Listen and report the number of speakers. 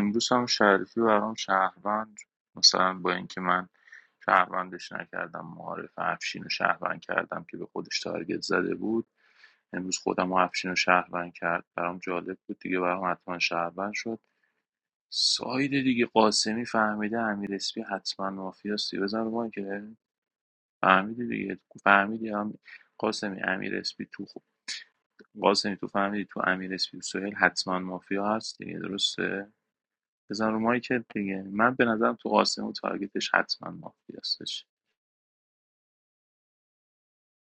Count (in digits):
1